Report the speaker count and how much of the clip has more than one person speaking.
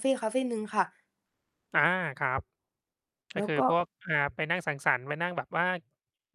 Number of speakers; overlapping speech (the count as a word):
two, about 5%